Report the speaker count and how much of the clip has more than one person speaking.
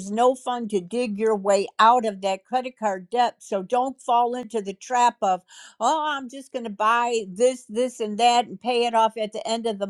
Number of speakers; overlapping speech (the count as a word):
one, no overlap